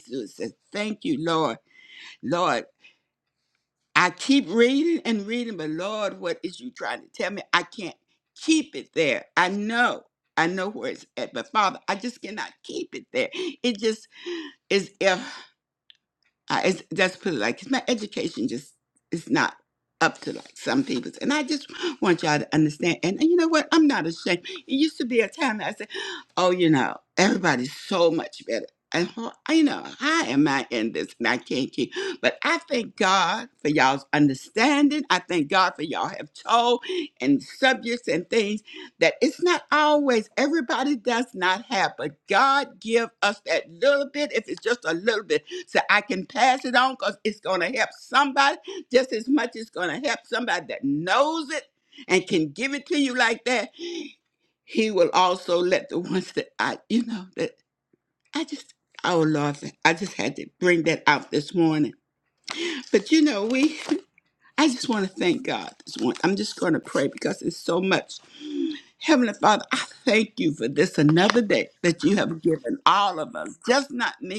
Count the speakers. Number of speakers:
1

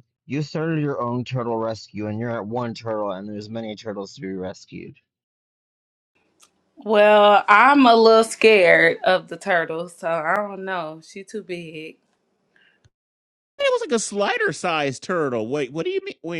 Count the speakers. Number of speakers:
3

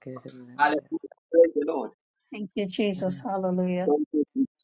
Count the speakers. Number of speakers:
2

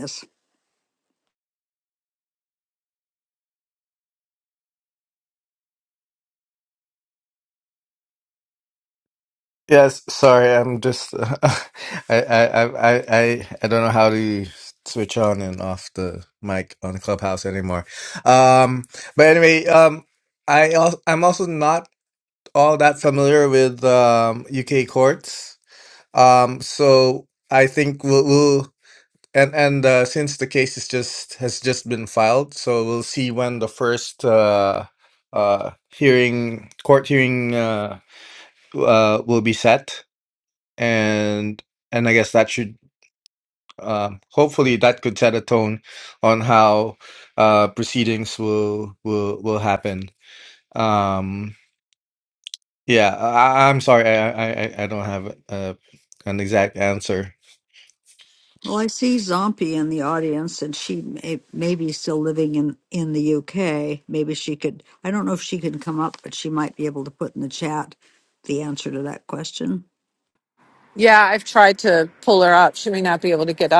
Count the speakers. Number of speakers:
3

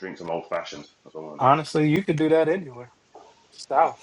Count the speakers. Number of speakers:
2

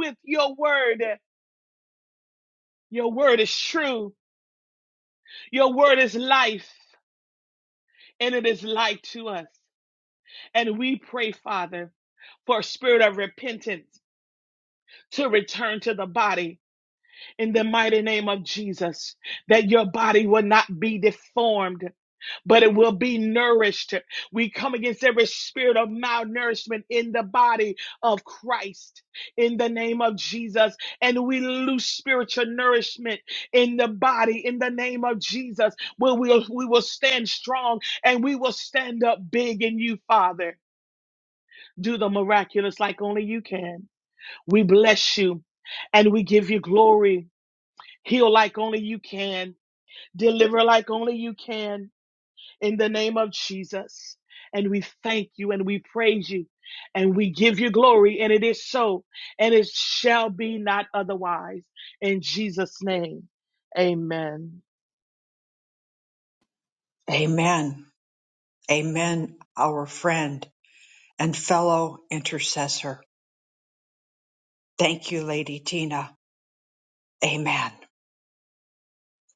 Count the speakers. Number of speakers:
2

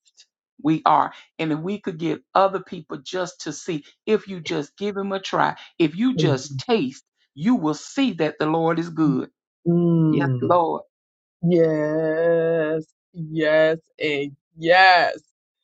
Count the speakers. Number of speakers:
2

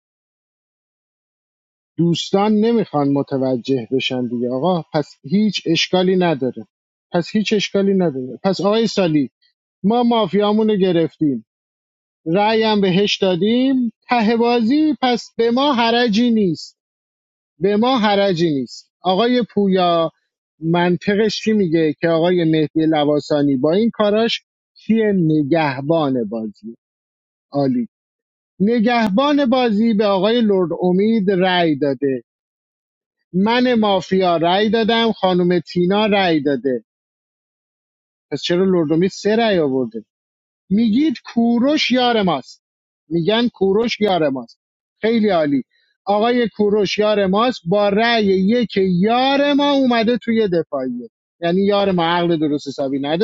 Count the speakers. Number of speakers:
1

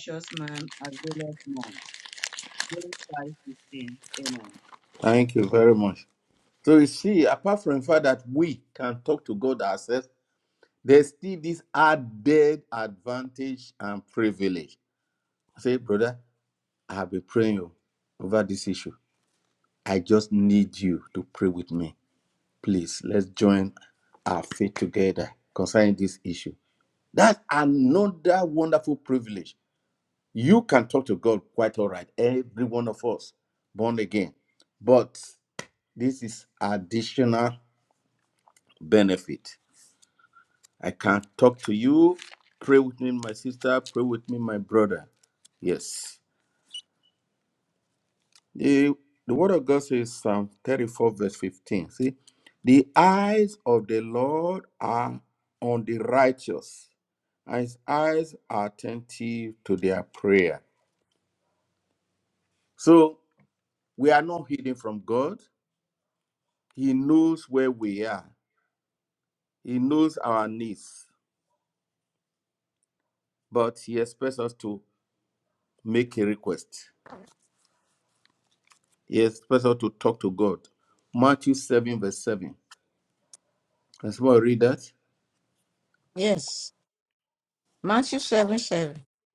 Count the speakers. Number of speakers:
3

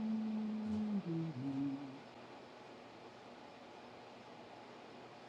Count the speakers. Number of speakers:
0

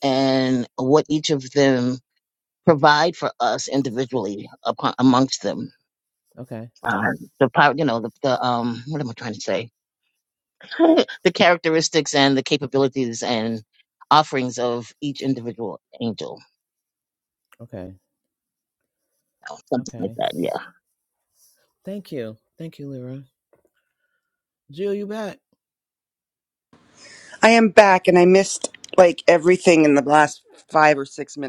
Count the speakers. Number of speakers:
3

